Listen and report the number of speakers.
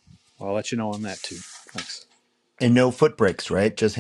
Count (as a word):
two